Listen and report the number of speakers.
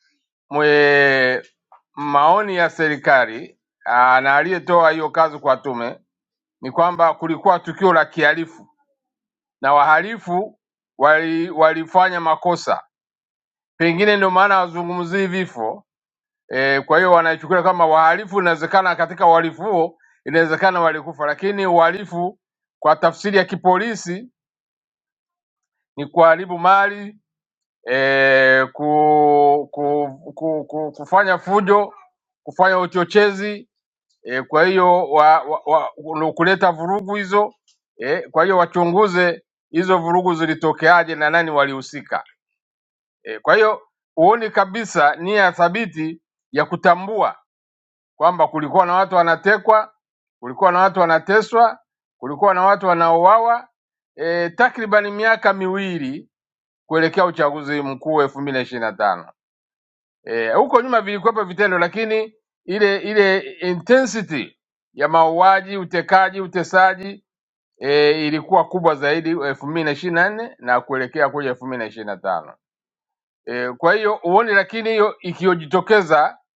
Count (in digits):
1